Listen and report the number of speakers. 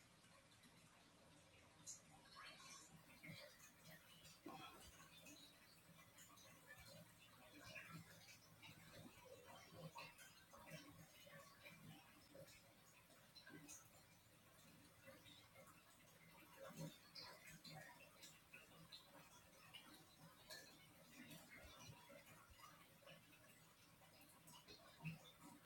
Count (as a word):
zero